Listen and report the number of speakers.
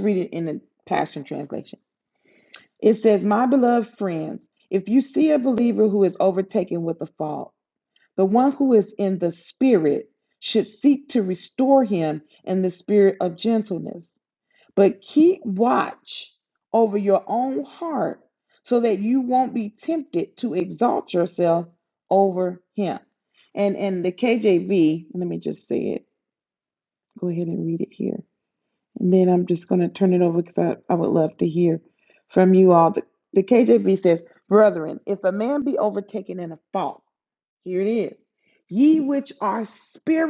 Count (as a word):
one